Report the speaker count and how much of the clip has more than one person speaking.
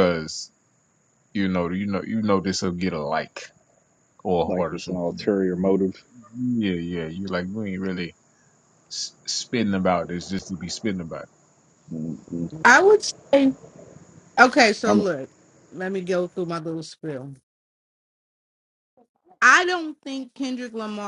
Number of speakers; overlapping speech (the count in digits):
3, about 6%